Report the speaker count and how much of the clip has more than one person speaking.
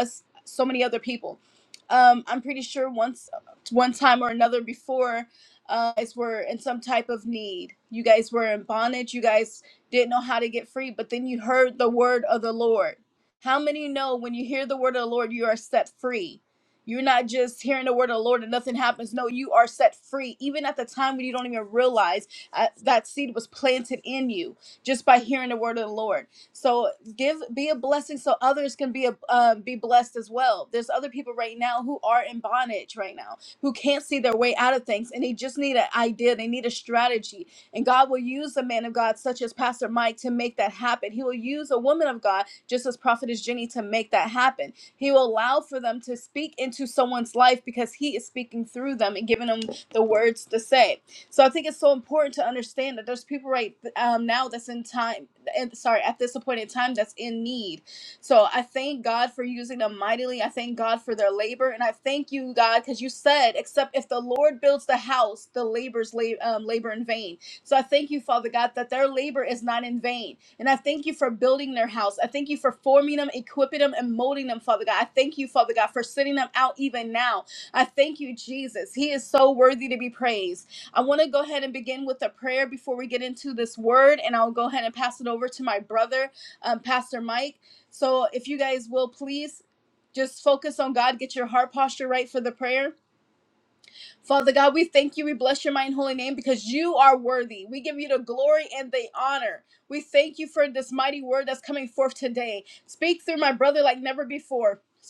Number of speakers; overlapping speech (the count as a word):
one, no overlap